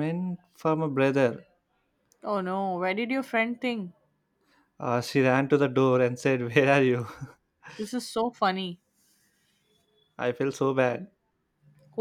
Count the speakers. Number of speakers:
two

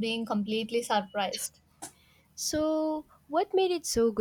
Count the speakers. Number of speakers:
two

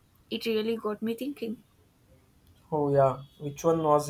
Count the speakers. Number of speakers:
two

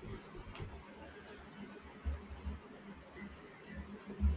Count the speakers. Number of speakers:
zero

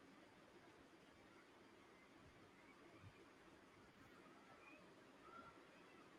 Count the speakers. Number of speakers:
zero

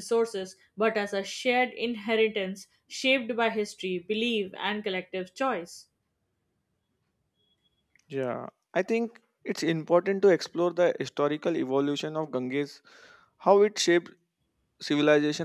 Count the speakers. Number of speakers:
two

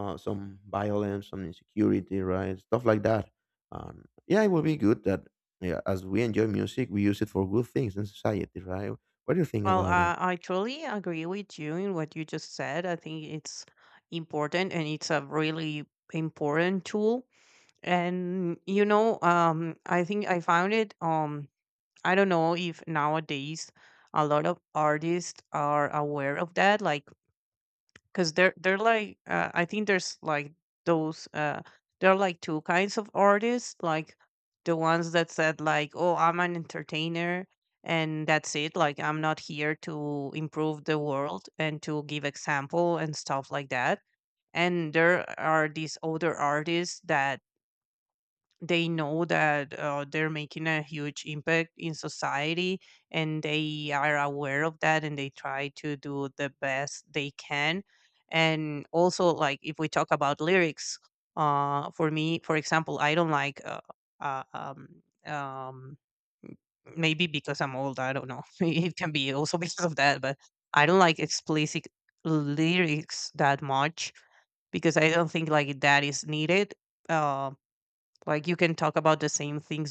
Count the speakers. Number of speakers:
two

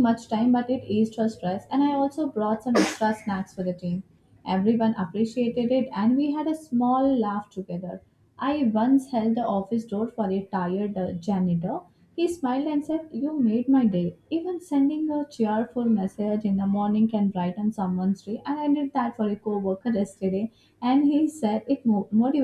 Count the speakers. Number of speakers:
one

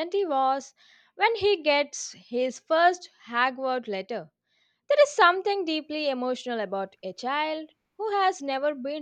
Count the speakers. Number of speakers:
one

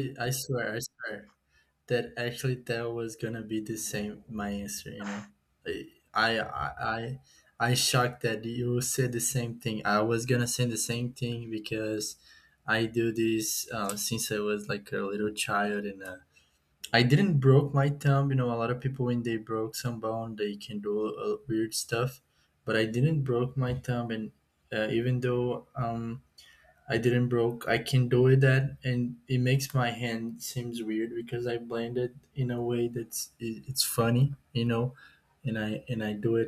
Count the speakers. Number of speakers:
one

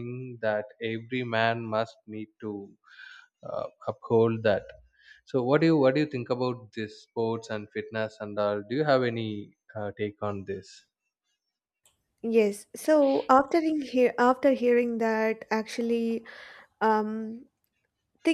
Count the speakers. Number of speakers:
two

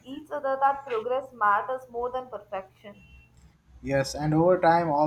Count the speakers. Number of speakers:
two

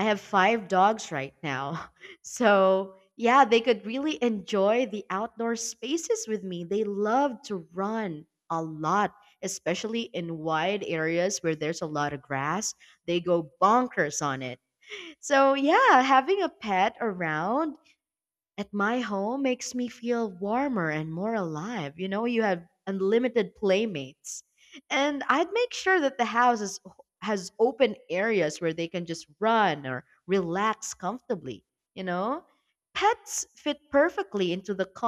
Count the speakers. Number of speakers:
one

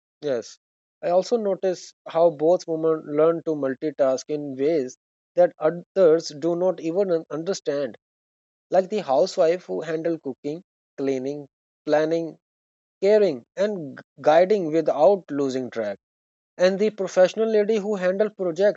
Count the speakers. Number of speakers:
one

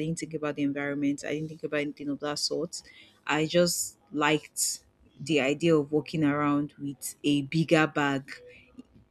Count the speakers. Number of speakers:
one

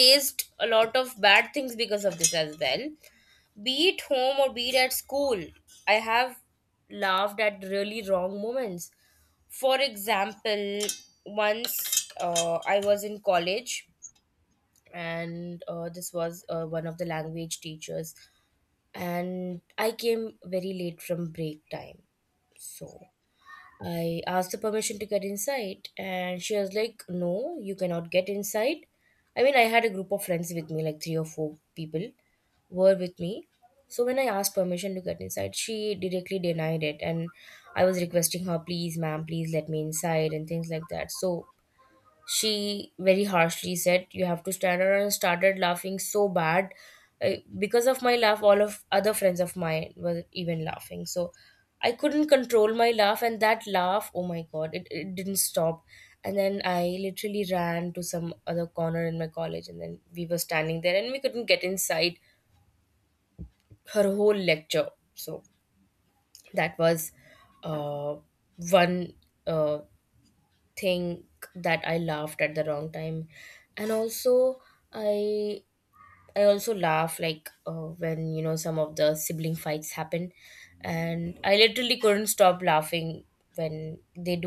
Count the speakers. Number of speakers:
one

